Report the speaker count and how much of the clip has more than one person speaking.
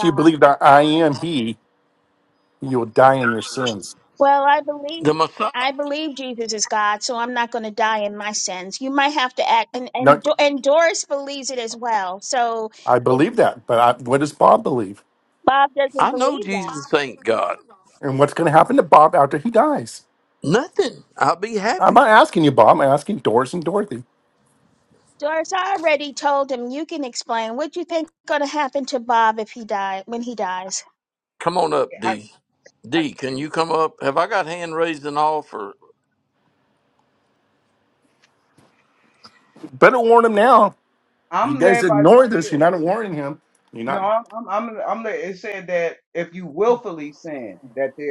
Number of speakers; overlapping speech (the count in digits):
4, about 7%